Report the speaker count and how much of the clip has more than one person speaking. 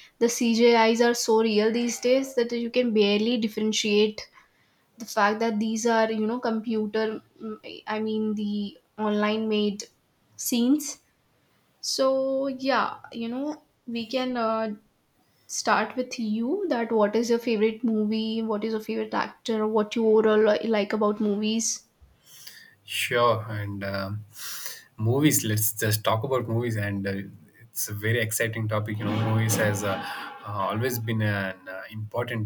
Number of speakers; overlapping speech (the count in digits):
2, no overlap